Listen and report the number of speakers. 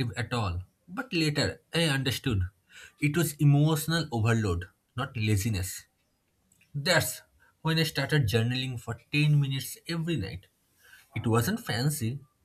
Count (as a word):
one